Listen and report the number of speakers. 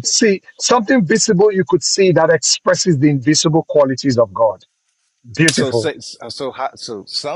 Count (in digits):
2